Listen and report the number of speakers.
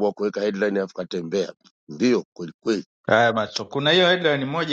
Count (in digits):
2